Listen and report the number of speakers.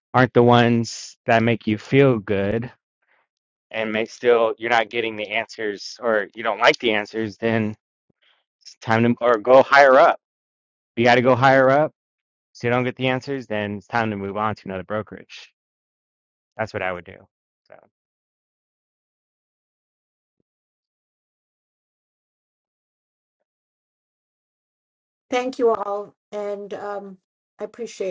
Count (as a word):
two